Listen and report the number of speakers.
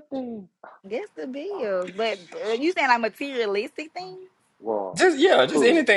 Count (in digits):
3